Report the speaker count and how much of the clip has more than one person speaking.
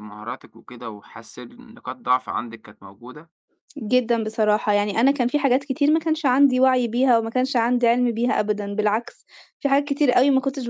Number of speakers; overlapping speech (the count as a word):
two, no overlap